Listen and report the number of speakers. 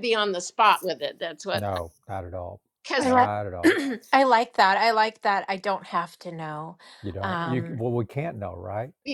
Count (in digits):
3